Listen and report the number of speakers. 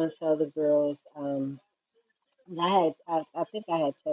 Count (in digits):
1